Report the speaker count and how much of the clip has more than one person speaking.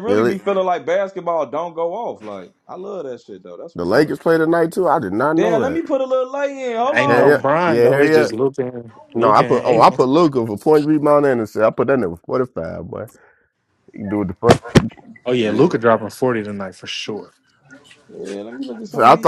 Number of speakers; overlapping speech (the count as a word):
three, about 21%